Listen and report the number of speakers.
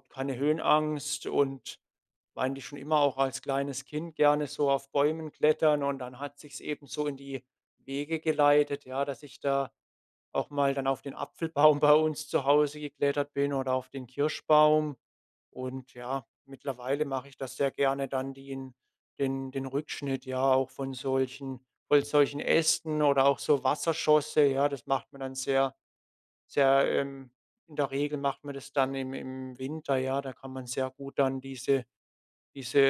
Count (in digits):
1